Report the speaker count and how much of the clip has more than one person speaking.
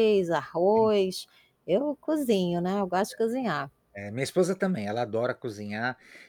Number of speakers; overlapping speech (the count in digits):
2, about 3%